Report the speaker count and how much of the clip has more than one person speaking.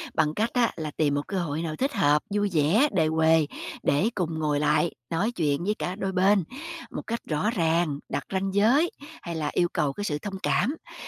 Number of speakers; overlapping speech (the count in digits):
1, no overlap